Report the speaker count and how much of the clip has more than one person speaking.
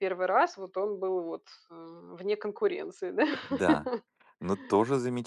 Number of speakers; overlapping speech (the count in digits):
2, no overlap